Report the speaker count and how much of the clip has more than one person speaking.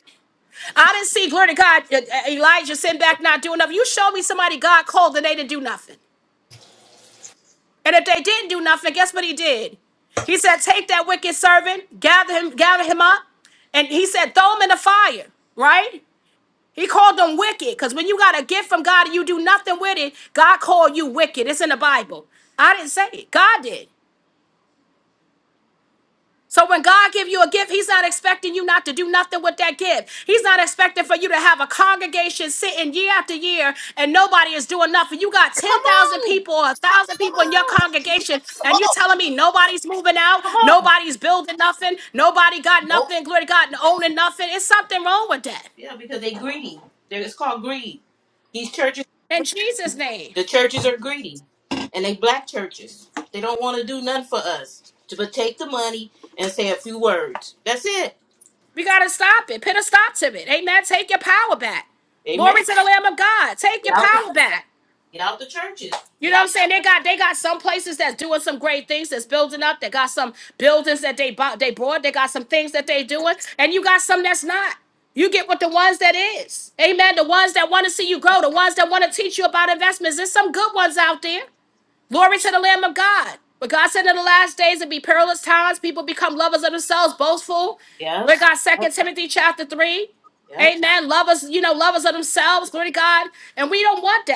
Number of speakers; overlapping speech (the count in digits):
2, about 4%